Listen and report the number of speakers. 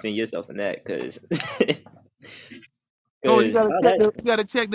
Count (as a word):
two